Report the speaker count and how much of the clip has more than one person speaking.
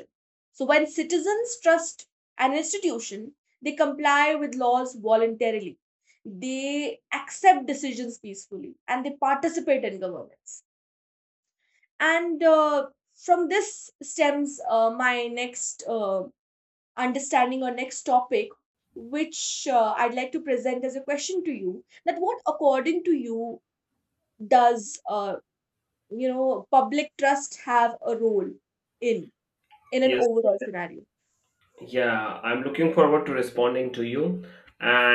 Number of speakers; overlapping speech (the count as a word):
two, about 1%